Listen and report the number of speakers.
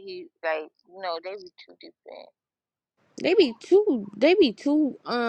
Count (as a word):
two